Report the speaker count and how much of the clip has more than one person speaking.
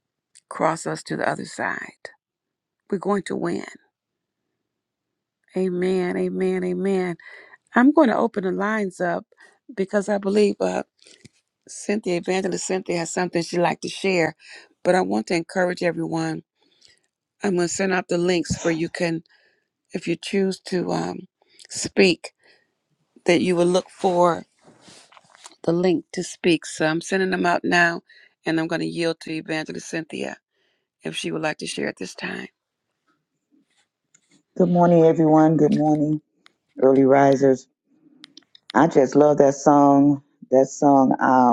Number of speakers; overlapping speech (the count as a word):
two, no overlap